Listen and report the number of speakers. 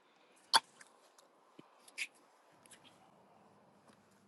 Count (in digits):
0